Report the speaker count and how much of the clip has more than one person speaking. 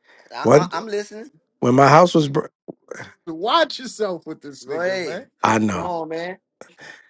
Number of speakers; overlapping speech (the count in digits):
3, about 15%